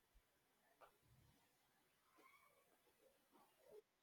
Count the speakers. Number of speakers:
zero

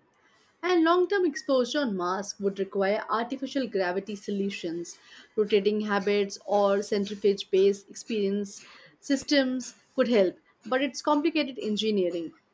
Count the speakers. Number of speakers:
one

